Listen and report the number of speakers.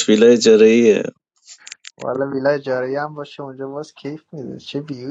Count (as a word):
two